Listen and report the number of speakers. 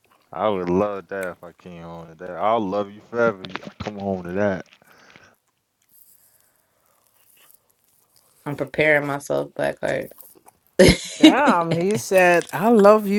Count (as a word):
three